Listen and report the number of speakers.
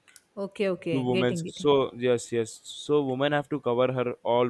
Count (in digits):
2